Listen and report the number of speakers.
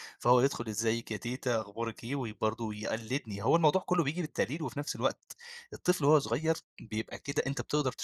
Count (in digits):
1